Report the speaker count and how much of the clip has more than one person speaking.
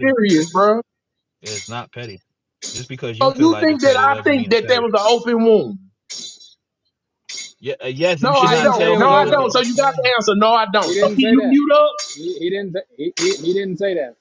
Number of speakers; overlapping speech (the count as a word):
three, about 31%